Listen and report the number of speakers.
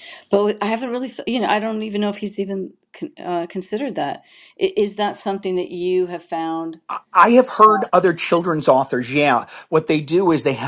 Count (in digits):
2